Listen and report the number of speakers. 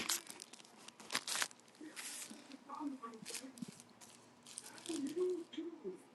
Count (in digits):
0